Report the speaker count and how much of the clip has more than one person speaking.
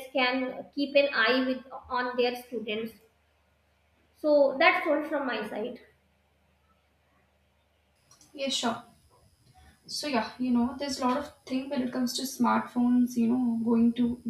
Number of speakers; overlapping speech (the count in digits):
2, no overlap